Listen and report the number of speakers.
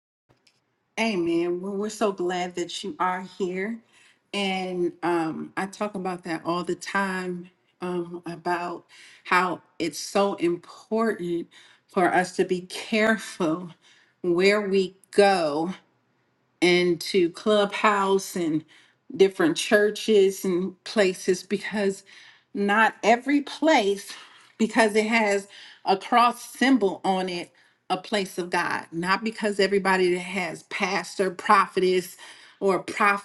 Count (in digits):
1